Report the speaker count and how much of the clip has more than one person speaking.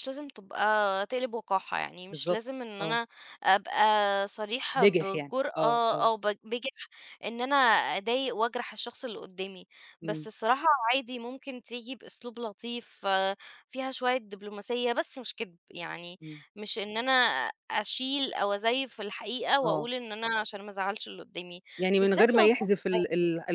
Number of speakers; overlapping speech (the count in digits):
2, about 12%